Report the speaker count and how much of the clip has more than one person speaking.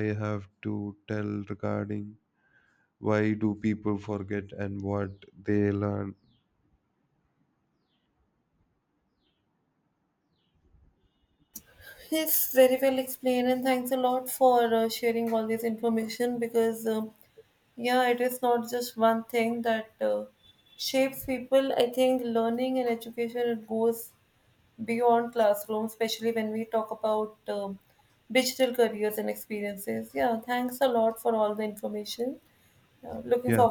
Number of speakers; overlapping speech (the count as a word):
two, about 1%